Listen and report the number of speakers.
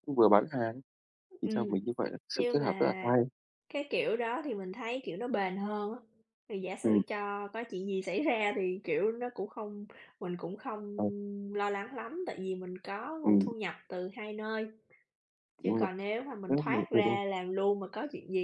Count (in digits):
2